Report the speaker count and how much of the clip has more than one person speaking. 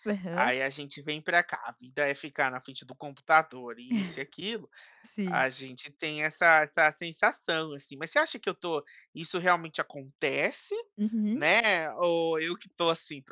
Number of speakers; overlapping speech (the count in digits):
2, about 3%